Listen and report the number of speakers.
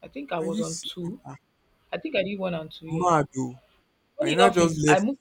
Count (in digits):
2